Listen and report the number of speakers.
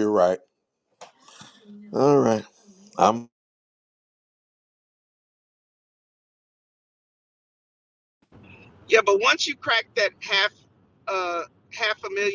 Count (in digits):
2